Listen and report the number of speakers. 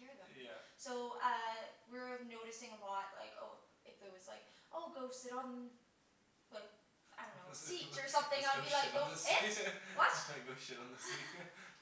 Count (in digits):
2